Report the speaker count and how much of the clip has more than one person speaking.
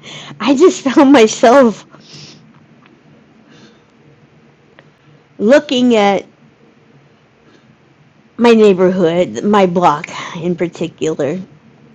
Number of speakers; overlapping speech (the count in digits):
1, no overlap